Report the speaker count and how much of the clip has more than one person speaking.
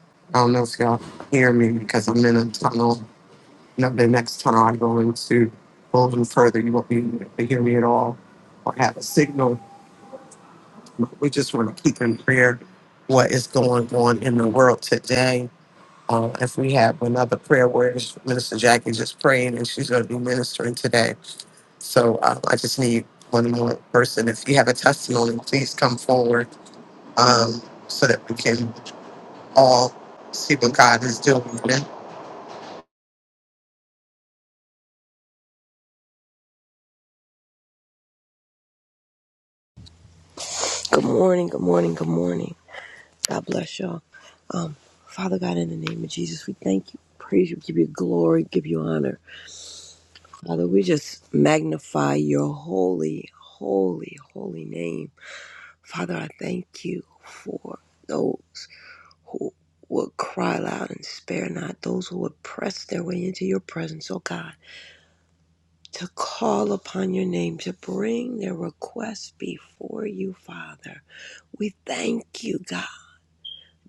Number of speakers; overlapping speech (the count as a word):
two, no overlap